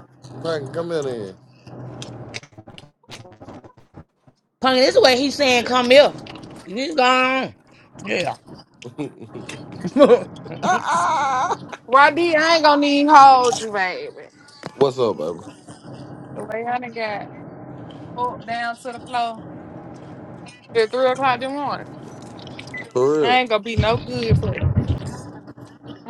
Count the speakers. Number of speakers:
3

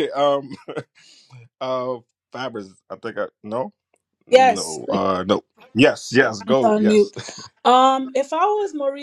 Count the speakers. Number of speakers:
2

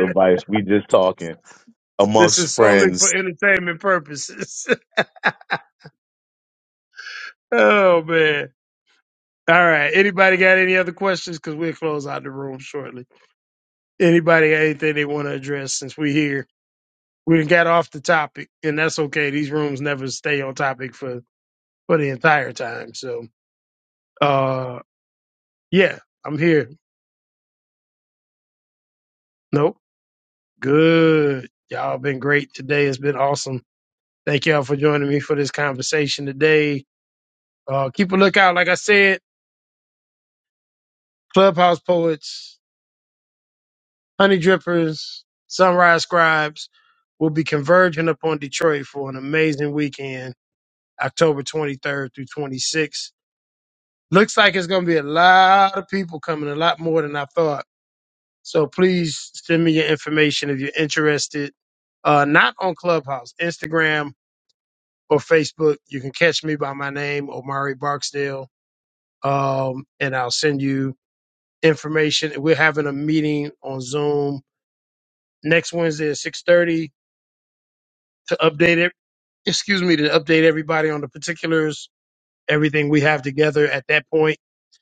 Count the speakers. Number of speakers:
2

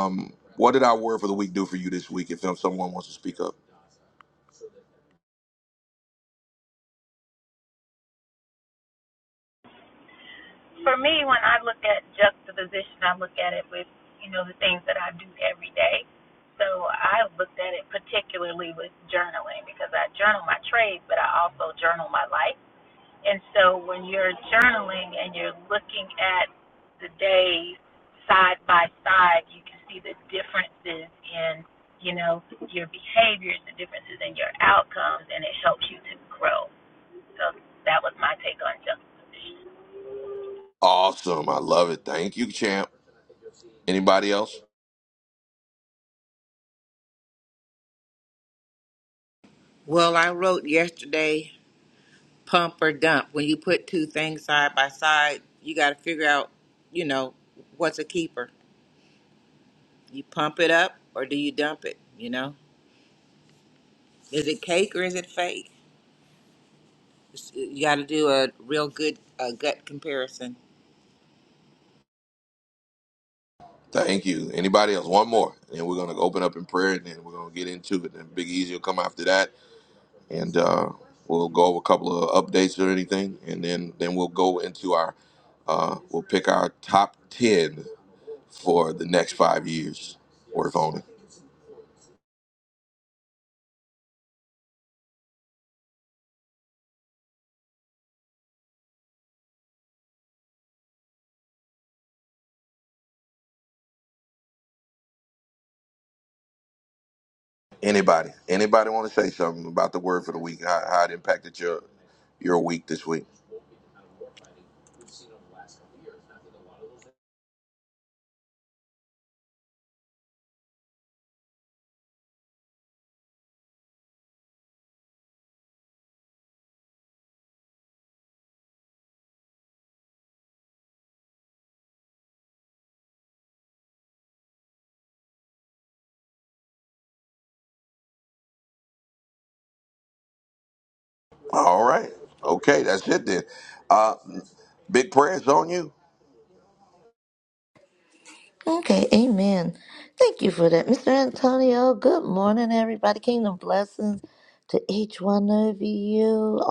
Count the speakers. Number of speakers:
4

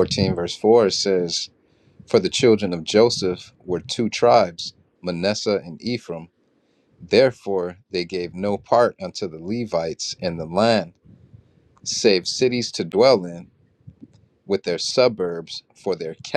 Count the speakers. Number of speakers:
1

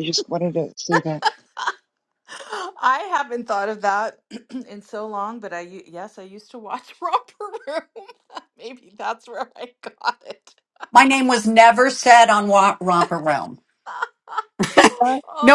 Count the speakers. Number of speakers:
3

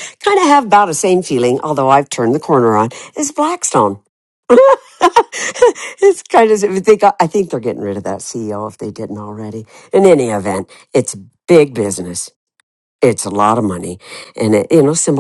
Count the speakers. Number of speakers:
1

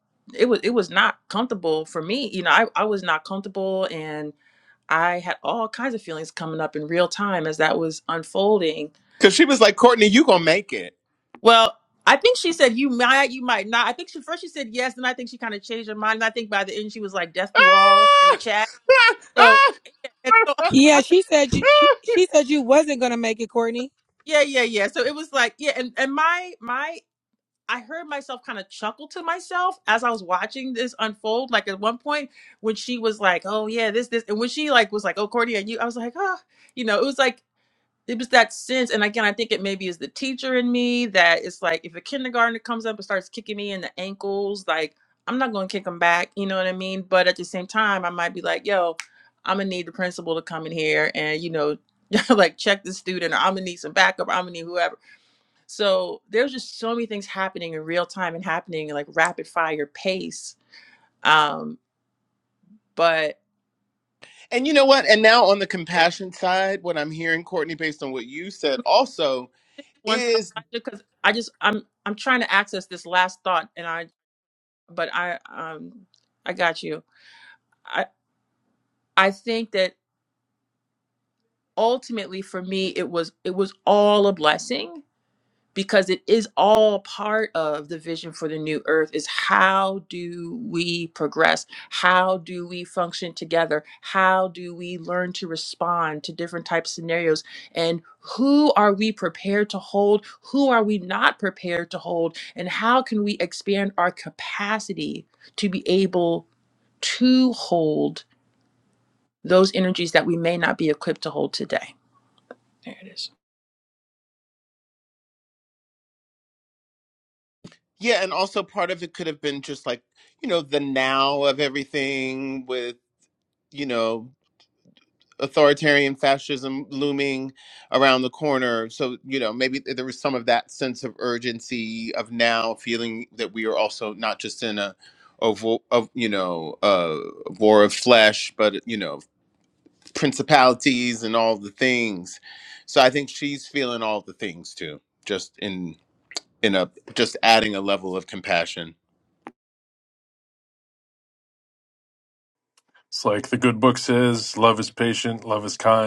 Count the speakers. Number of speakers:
4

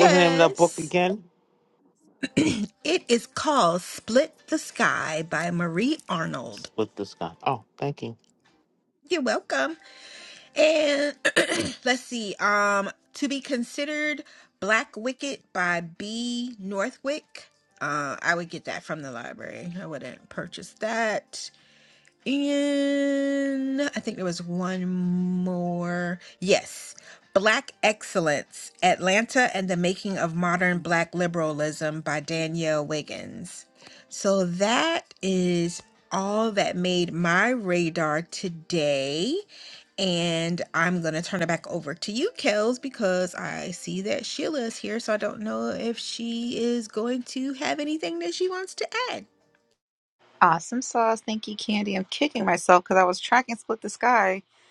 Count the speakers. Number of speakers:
3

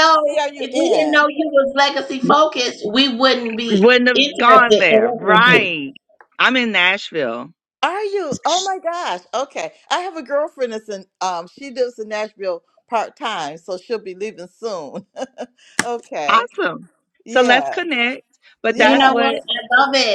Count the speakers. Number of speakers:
3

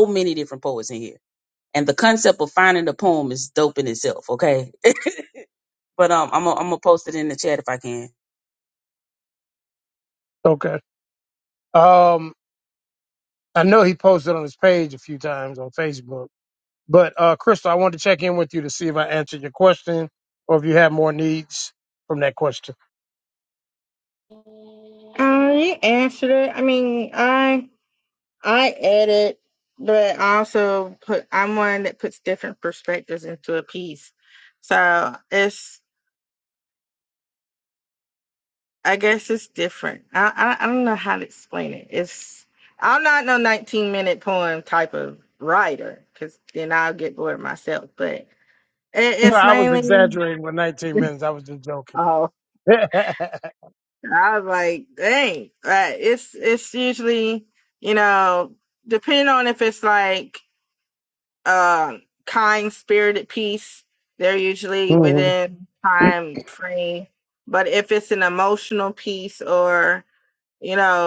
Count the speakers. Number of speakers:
3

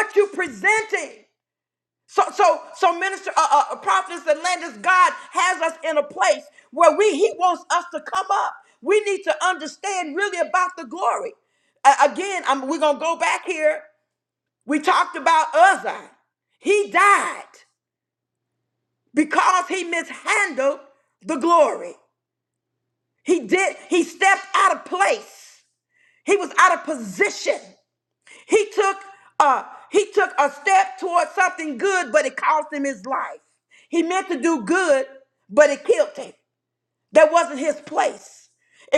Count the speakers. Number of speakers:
1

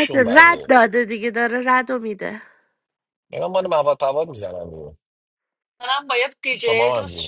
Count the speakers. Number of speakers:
3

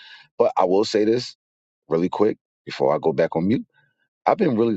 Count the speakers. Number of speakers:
1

